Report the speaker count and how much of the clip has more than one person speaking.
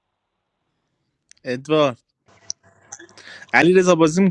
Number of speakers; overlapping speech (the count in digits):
1, no overlap